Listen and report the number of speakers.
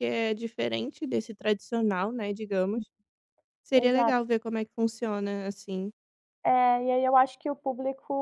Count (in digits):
2